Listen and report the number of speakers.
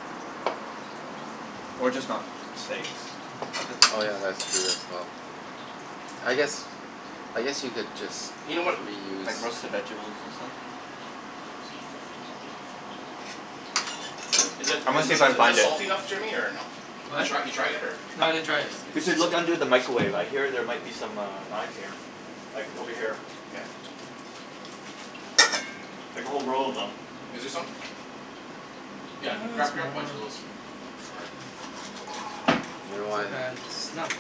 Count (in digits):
4